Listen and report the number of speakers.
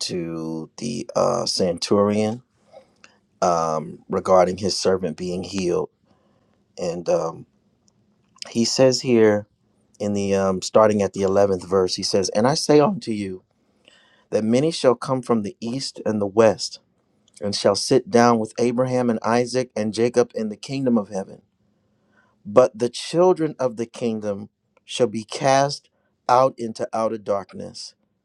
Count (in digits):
1